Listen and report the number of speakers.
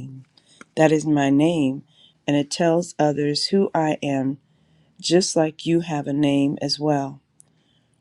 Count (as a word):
one